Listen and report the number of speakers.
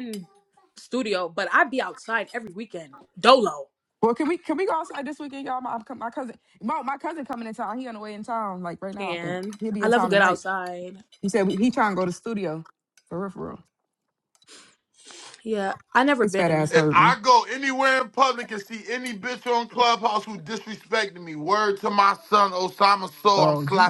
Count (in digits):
3